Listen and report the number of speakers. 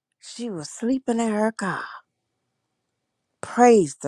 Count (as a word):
one